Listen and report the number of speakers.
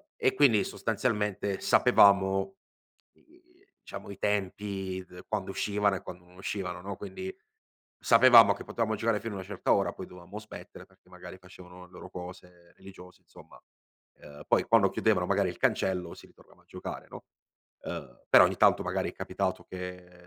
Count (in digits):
1